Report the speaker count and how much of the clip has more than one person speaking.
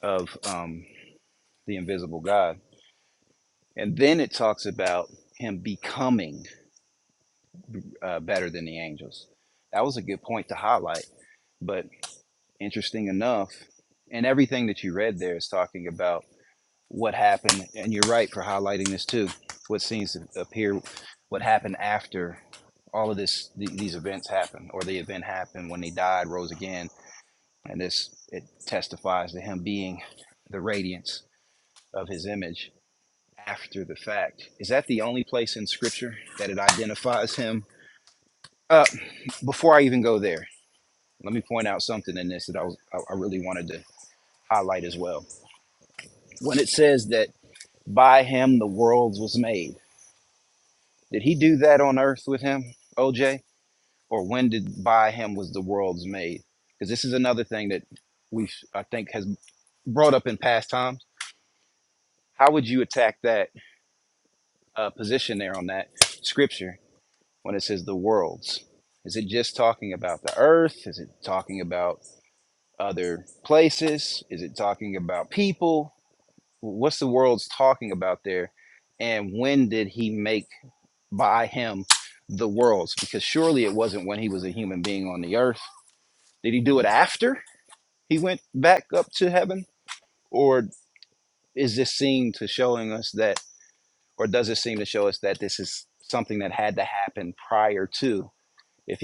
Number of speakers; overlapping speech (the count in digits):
1, no overlap